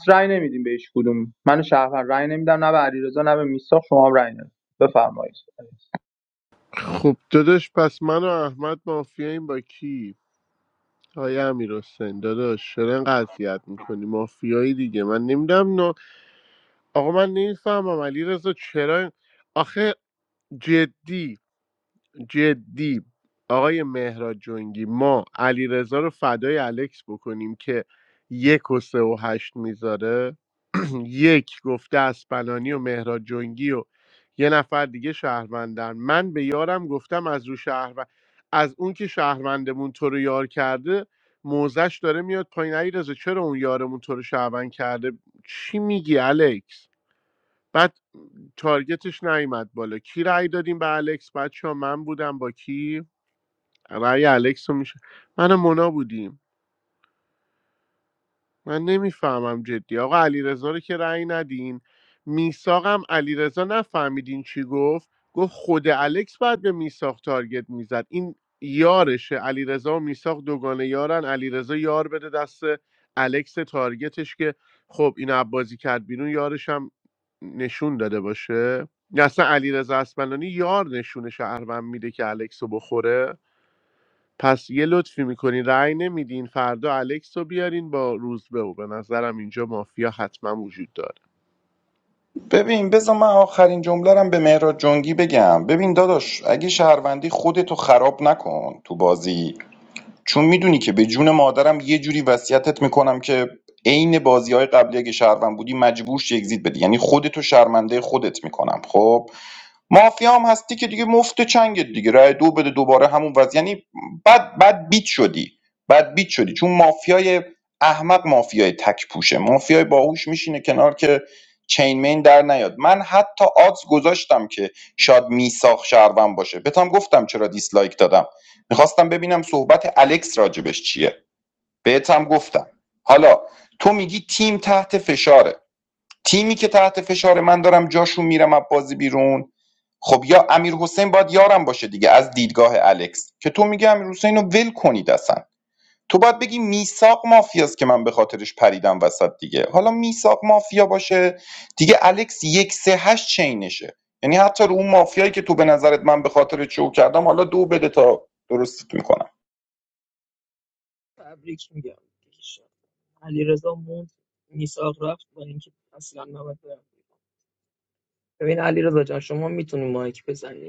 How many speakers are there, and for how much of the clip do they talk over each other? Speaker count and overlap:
4, no overlap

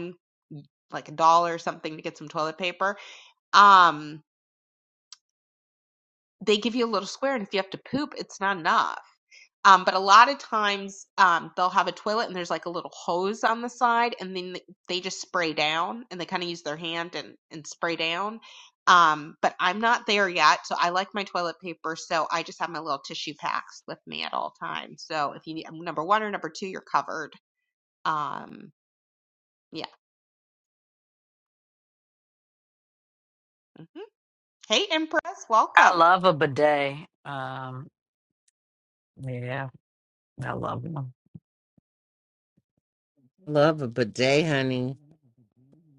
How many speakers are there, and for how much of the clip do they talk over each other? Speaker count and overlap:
3, under 1%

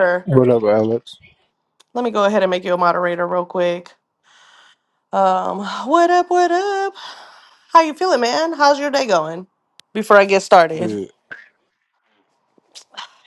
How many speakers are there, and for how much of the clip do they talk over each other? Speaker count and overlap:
2, about 1%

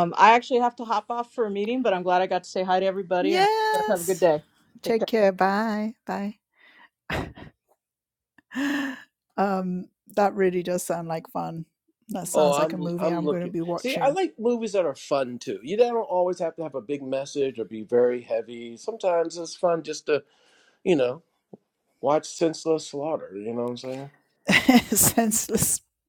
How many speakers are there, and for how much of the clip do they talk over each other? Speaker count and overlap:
3, about 10%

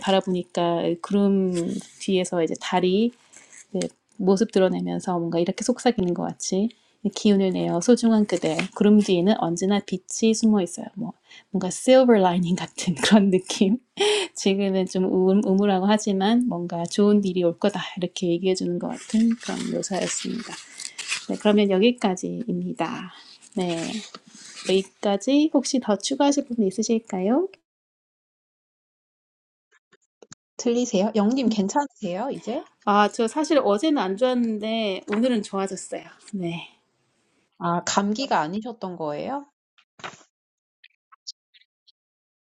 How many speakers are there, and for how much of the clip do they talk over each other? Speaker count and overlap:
2, no overlap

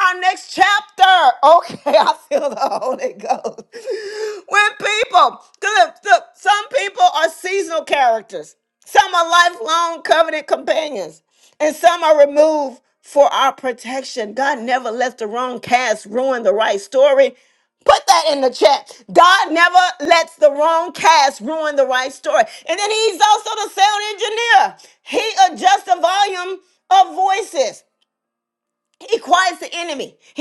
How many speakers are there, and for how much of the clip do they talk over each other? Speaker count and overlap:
1, no overlap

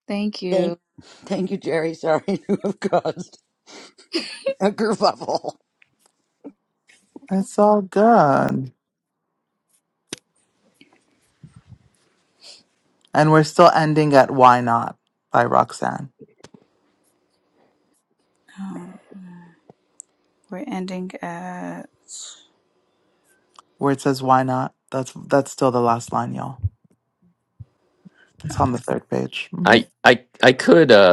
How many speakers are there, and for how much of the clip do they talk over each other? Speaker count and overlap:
4, about 1%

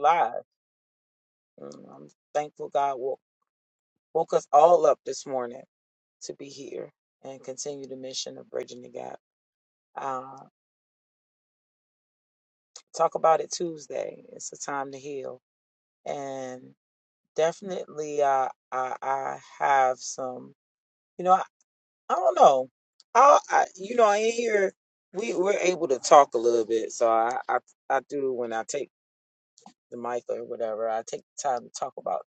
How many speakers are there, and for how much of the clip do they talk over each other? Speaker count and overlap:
1, no overlap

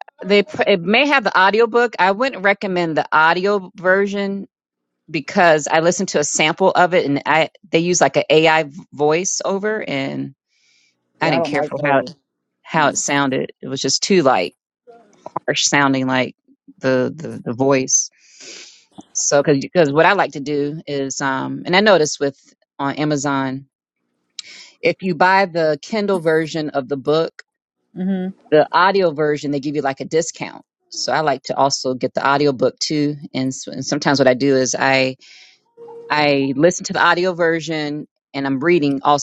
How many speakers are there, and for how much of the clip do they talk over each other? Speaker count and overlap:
2, about 2%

